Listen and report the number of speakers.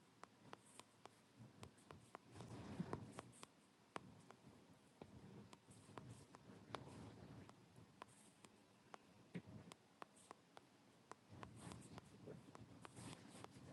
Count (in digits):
0